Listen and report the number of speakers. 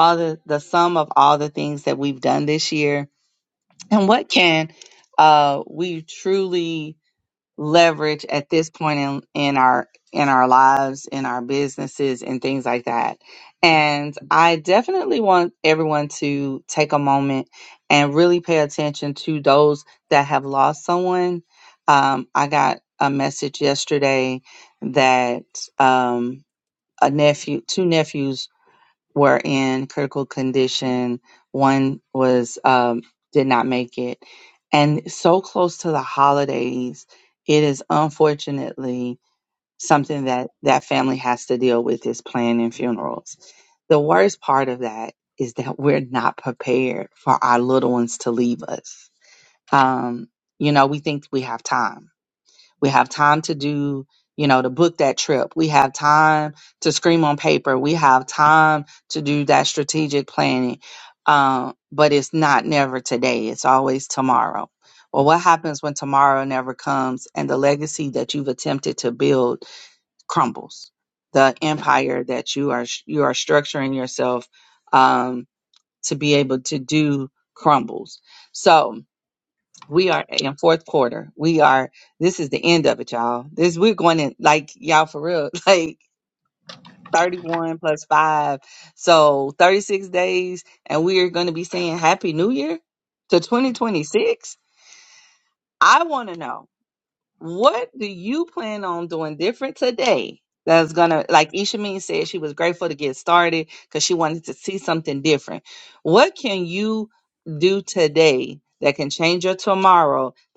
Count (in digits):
1